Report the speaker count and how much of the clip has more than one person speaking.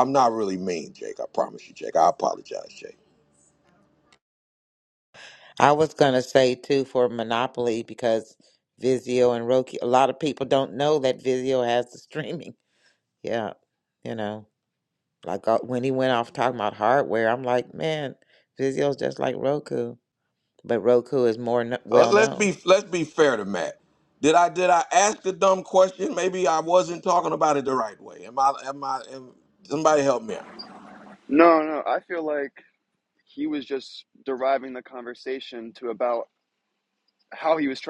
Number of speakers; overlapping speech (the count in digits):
3, about 1%